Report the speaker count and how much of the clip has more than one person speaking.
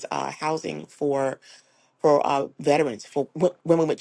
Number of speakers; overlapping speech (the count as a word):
one, no overlap